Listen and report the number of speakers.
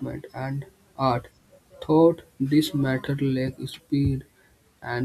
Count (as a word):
one